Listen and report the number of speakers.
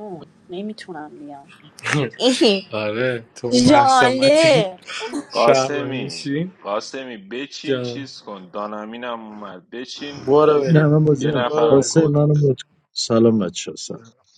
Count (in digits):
4